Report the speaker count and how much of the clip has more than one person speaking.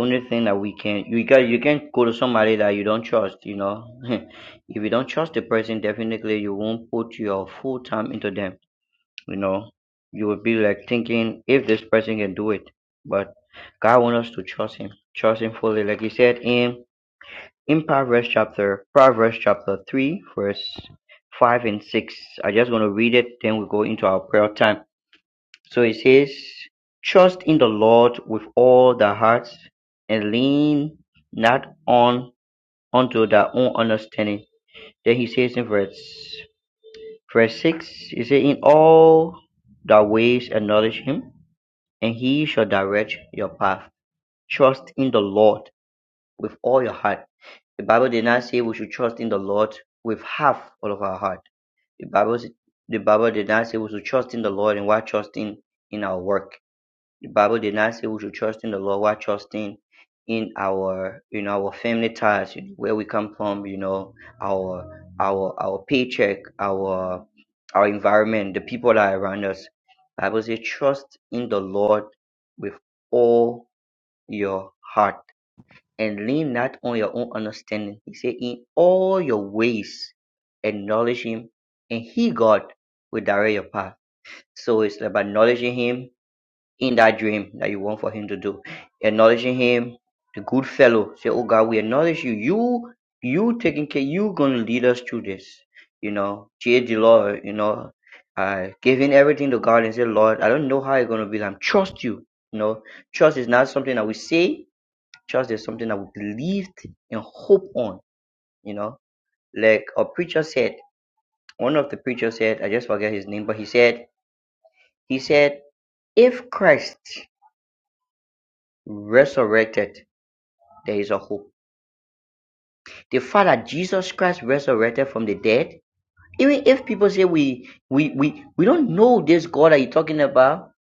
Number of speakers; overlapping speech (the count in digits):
1, no overlap